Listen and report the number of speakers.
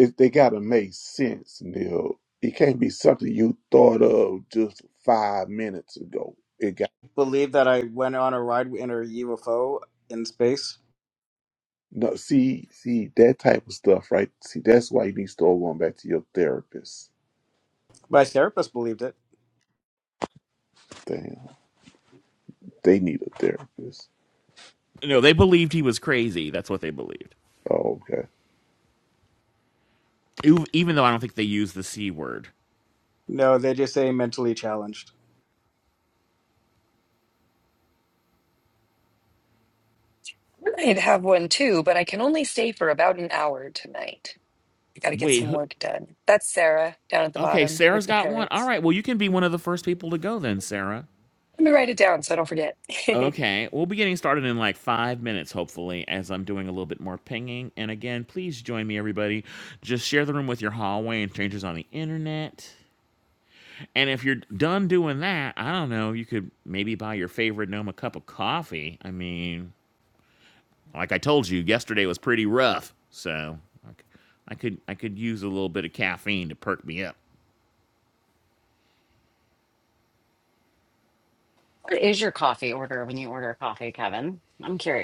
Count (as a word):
five